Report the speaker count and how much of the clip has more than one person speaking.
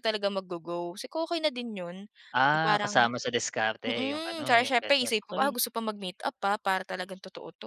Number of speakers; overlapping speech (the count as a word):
two, about 28%